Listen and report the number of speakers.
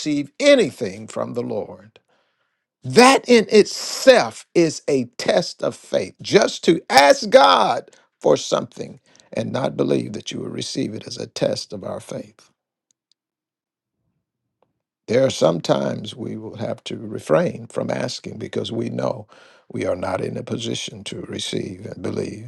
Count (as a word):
one